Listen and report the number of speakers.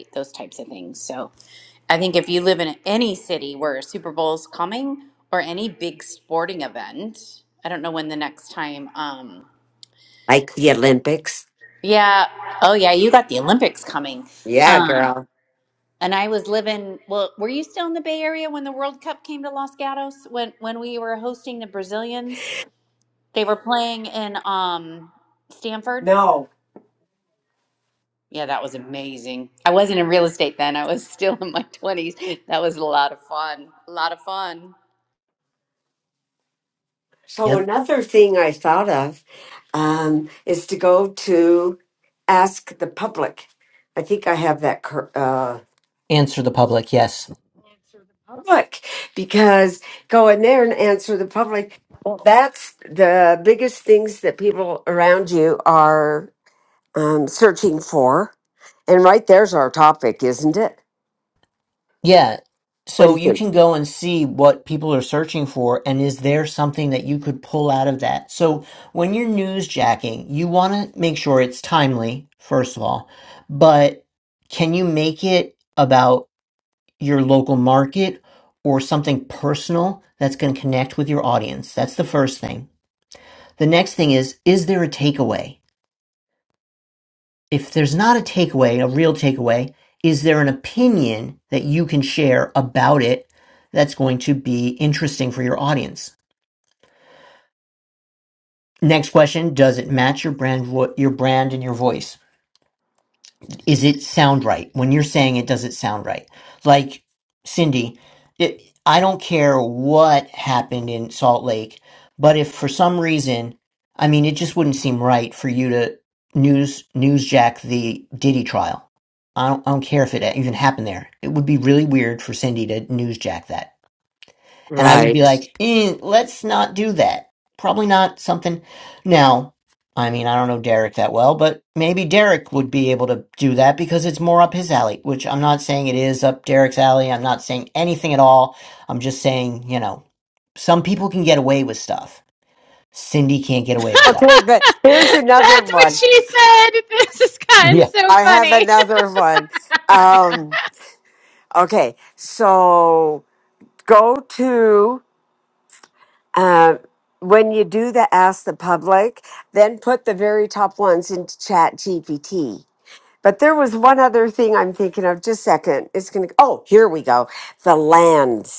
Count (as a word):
four